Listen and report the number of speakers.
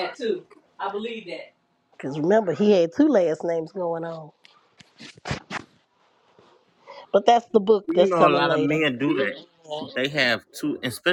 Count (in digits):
3